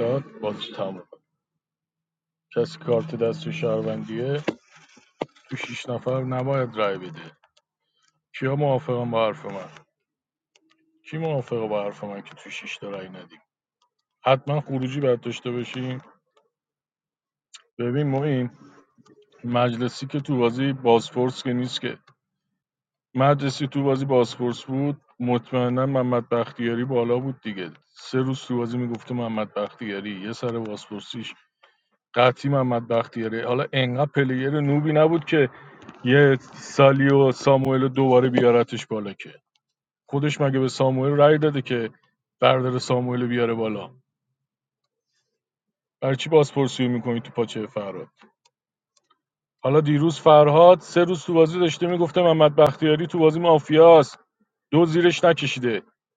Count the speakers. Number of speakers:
one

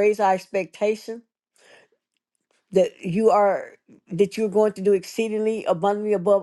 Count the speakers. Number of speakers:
one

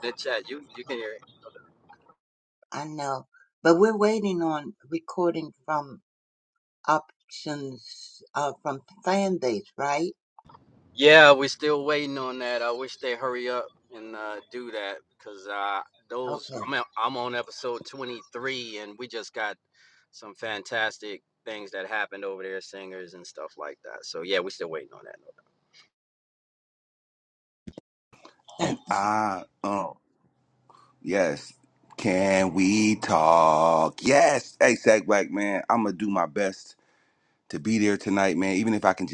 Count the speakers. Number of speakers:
three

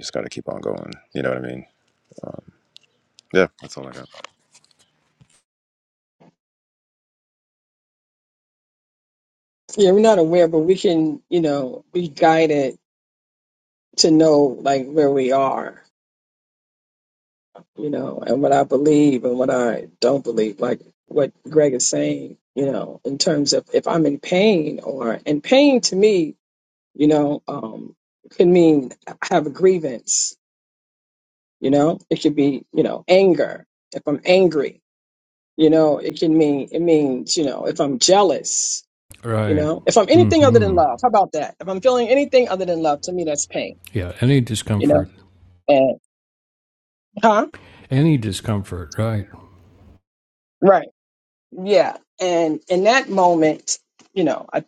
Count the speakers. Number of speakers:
three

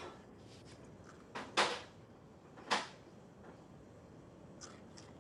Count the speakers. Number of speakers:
zero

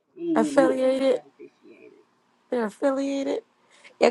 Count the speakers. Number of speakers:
two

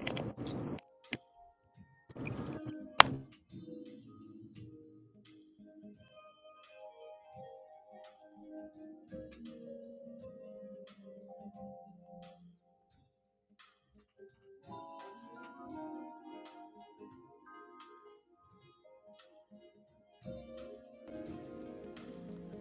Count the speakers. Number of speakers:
zero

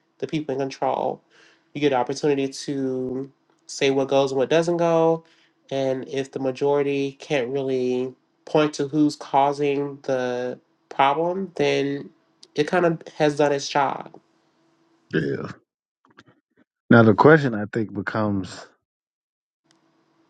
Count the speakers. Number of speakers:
two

